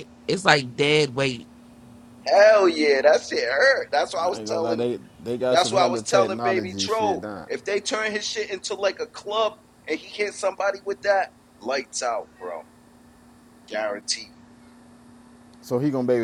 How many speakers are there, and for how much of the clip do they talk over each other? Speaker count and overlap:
three, about 16%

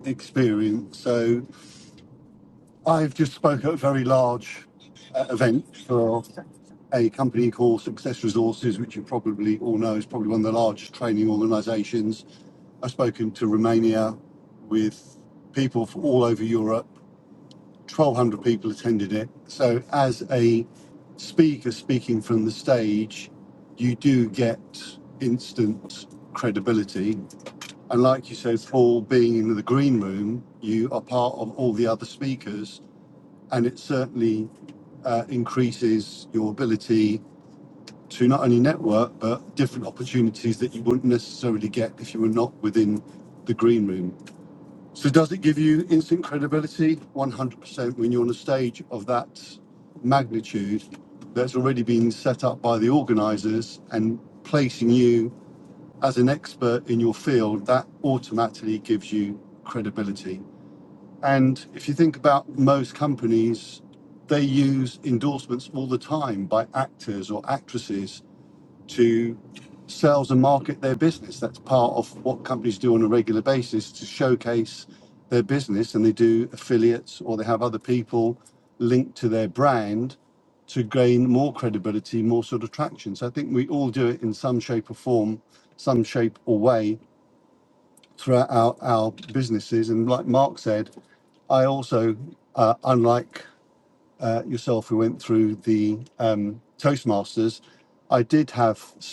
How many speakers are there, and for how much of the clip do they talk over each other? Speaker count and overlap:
one, no overlap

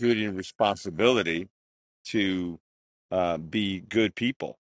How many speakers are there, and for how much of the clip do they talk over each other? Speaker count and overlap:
one, no overlap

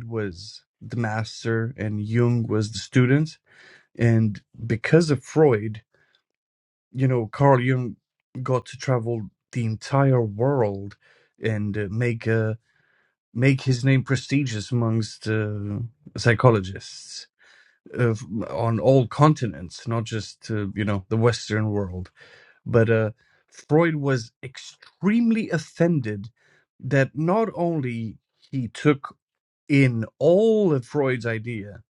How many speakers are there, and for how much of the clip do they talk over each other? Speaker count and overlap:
one, no overlap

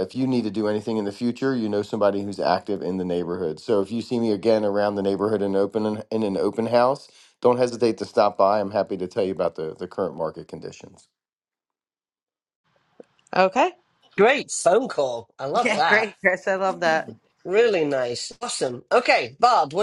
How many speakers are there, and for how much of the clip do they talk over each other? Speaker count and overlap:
three, about 3%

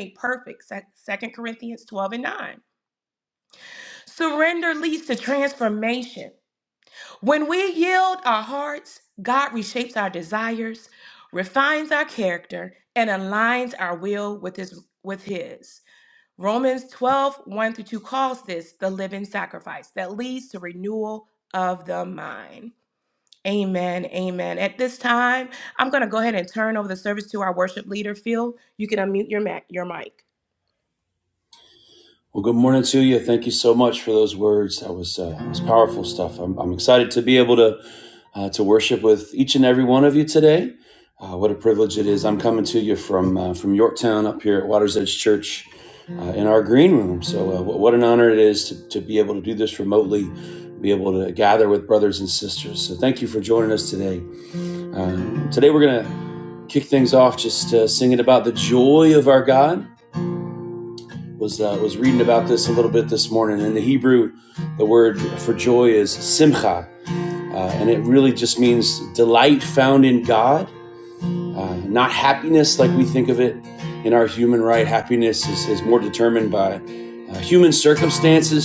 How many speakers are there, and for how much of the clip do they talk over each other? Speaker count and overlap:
two, no overlap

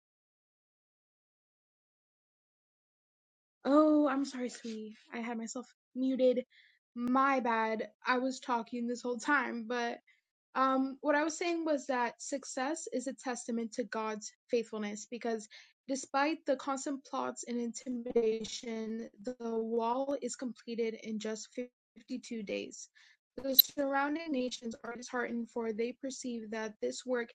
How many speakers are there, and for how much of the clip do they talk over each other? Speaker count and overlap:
one, no overlap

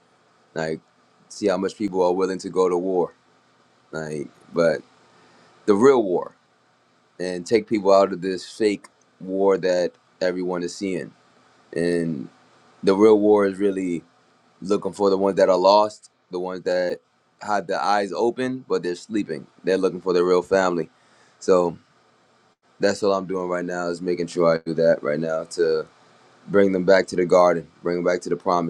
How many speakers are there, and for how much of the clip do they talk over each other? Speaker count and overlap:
one, no overlap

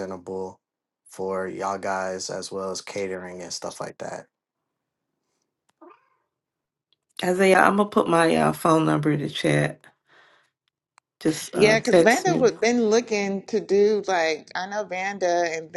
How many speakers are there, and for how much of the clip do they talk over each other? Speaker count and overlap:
three, about 6%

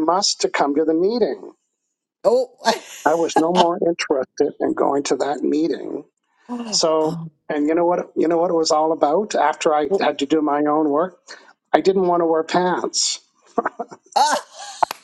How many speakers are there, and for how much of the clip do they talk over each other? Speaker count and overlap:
two, about 3%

